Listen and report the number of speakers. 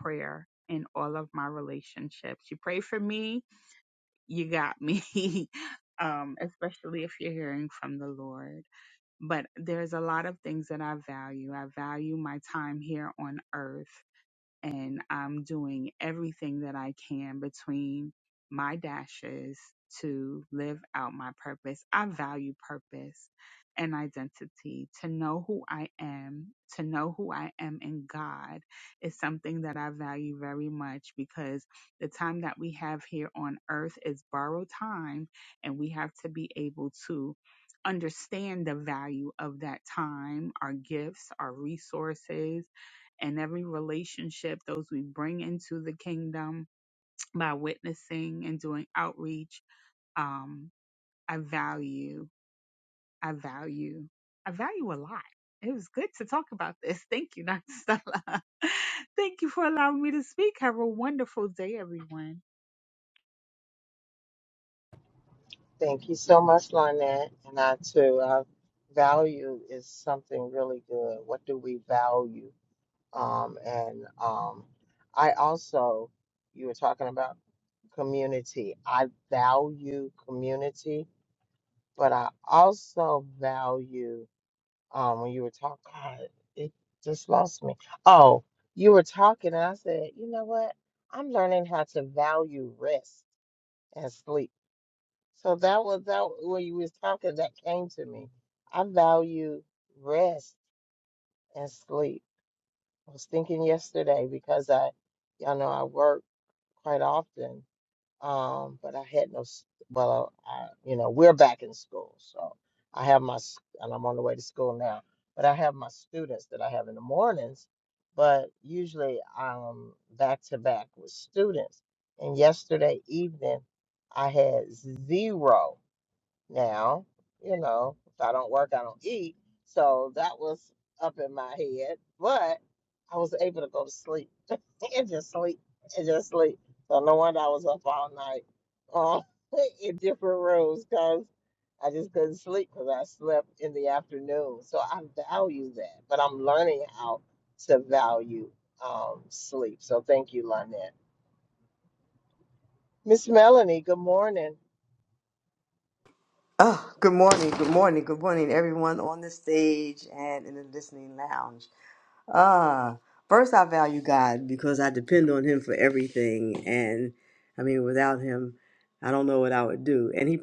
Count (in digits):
3